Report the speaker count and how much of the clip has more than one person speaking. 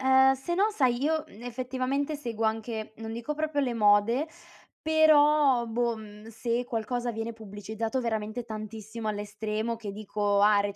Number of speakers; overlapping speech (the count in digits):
1, no overlap